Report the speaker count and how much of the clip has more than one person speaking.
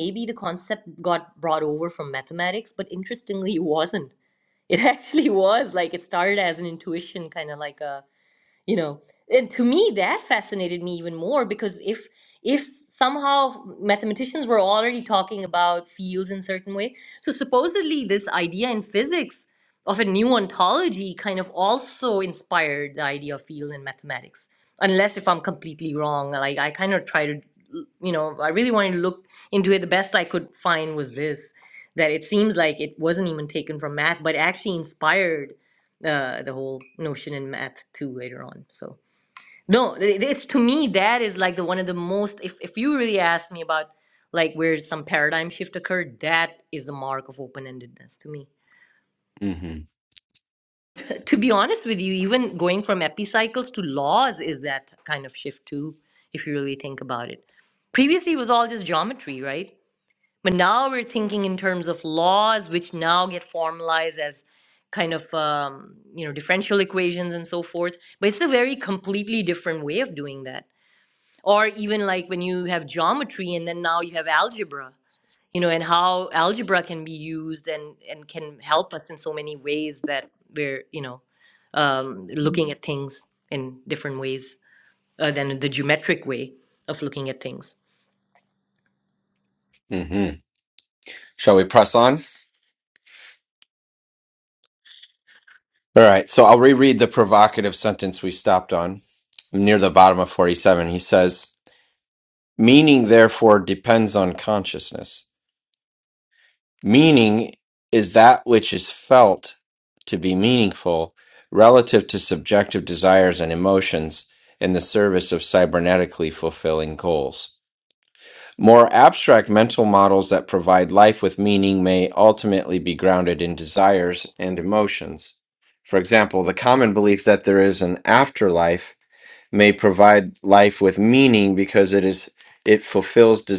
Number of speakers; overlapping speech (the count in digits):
2, no overlap